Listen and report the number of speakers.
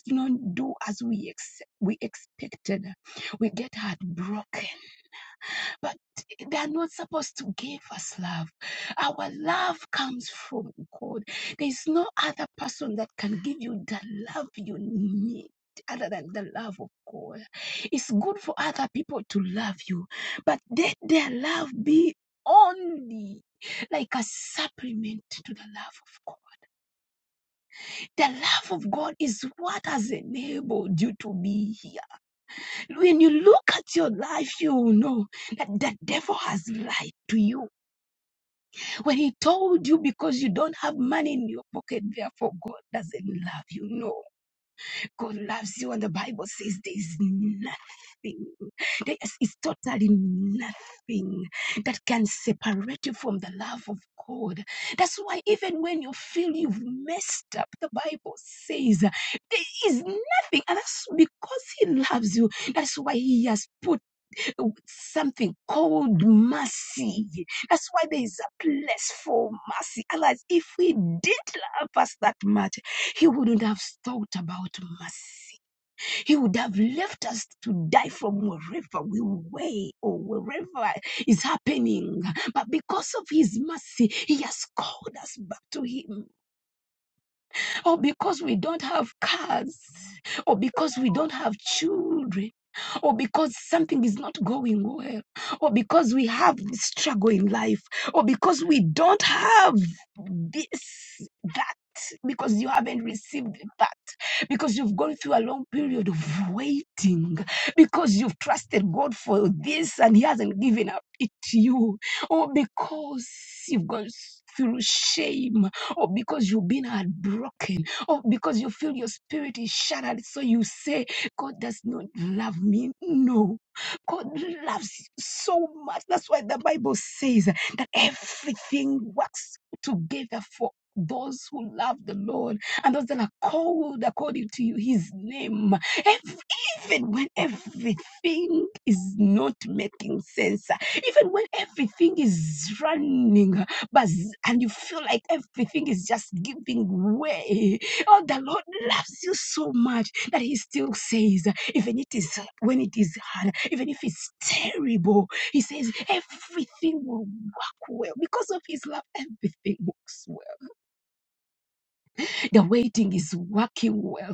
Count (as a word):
one